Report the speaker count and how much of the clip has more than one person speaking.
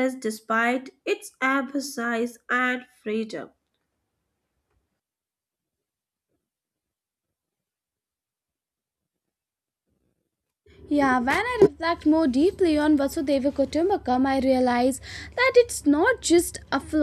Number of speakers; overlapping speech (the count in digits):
2, no overlap